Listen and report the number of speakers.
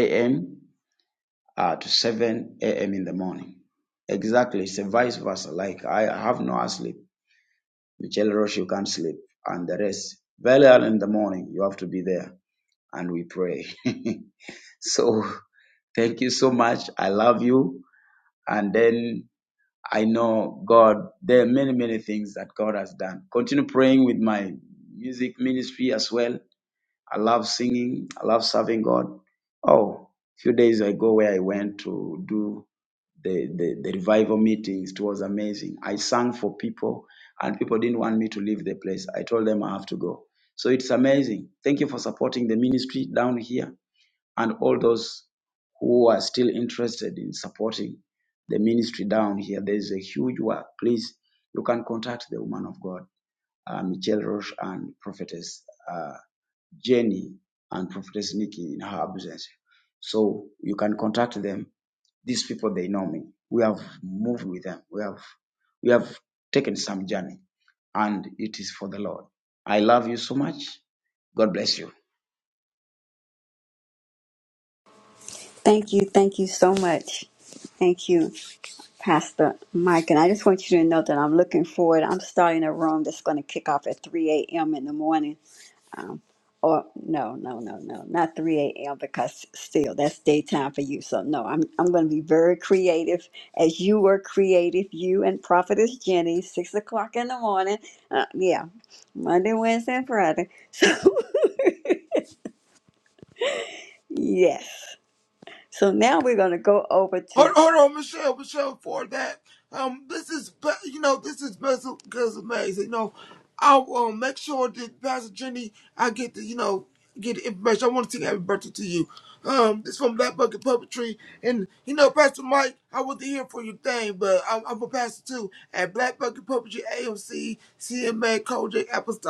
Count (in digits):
3